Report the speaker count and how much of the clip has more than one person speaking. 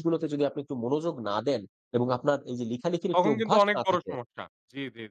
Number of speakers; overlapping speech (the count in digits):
2, about 21%